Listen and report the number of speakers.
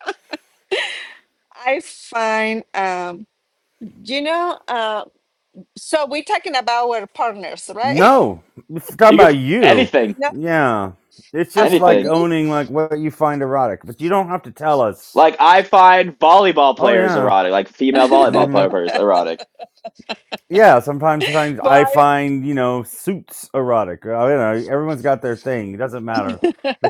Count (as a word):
three